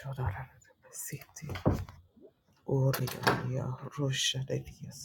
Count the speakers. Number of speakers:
1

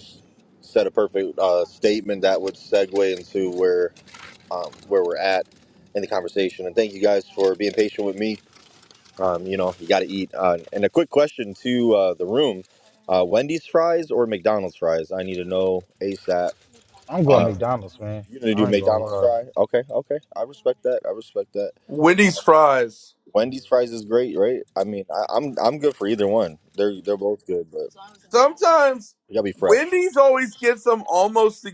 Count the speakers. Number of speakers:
3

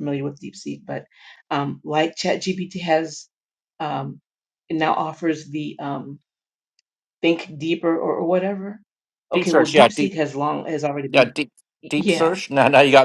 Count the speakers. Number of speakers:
2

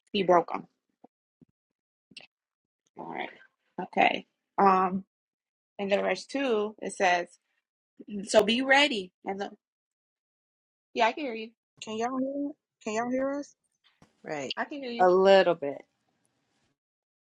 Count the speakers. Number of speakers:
3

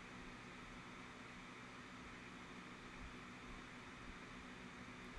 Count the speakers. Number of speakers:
0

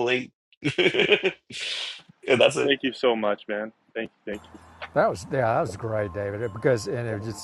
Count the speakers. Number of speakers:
3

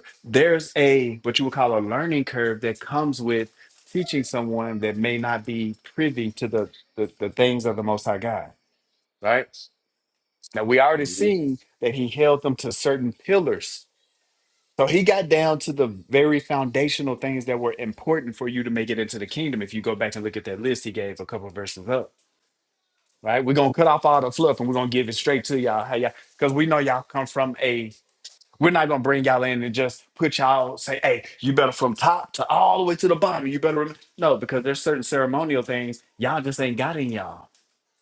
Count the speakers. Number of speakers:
1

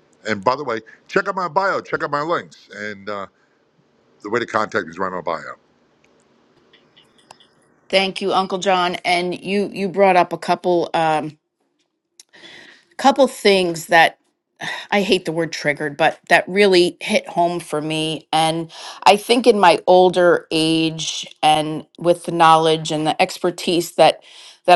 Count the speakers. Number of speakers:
2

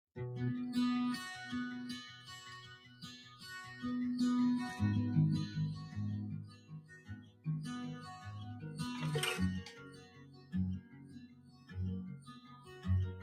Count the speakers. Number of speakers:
0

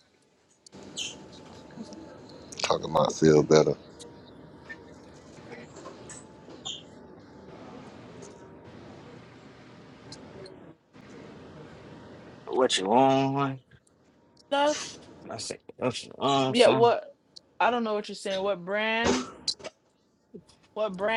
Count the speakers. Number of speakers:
3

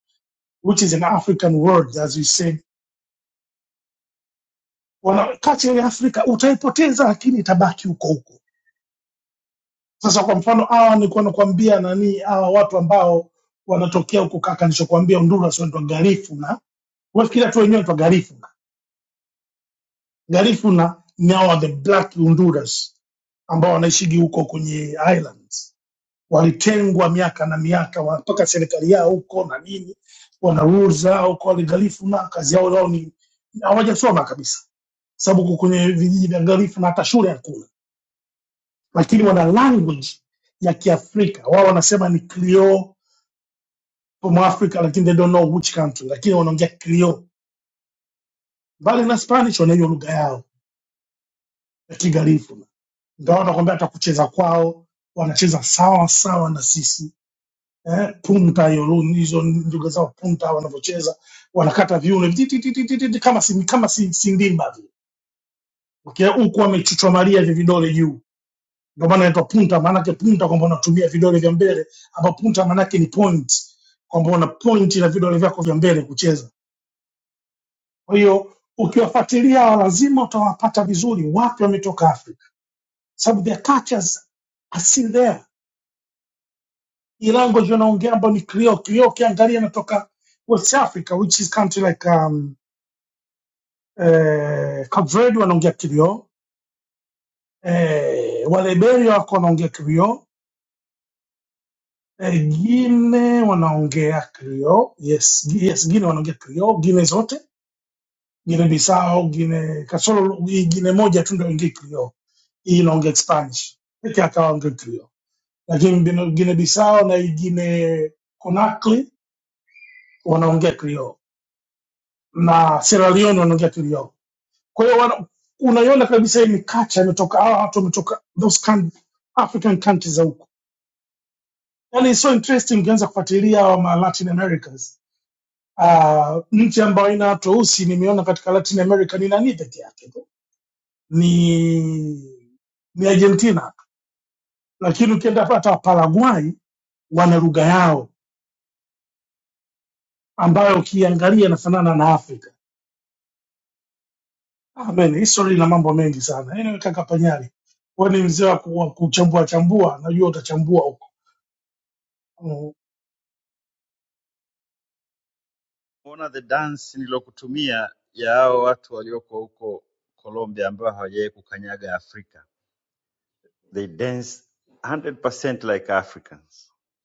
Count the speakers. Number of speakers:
2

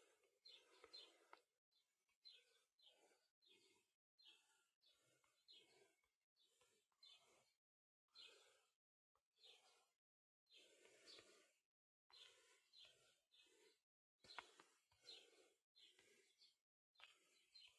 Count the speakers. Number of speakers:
0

